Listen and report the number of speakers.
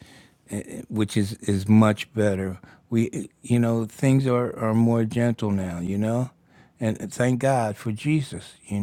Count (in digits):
1